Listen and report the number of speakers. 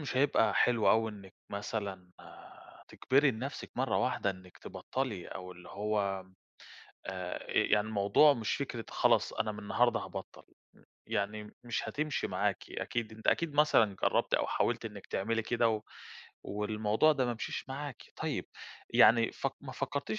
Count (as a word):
one